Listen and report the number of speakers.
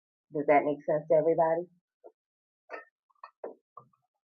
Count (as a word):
one